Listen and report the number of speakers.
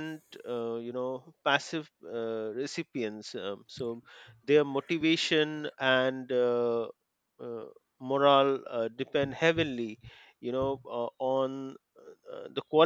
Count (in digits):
1